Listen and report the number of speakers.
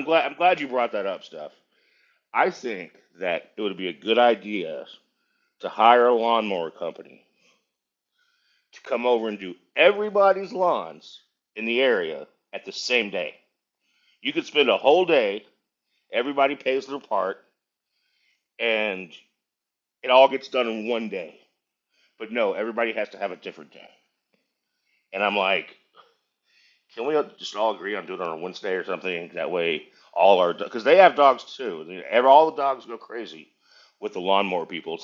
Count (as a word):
one